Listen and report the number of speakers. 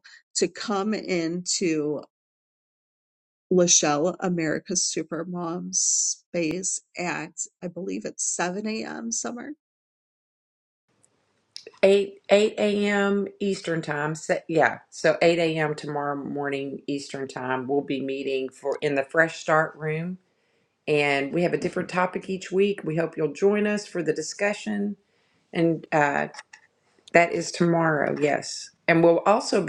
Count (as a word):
two